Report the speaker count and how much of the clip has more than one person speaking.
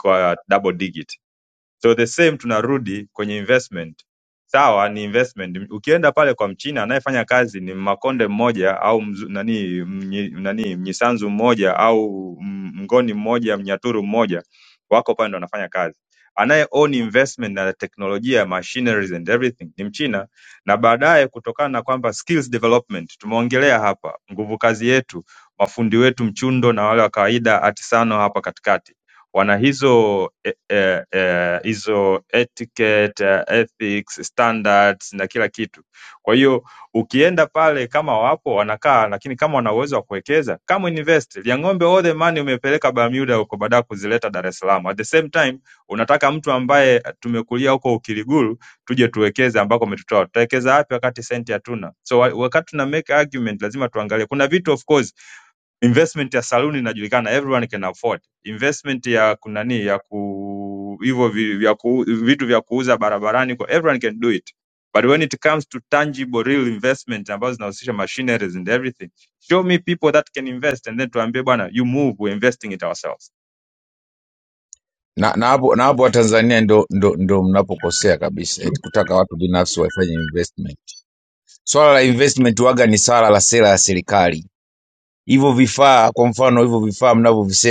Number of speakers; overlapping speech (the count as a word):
two, no overlap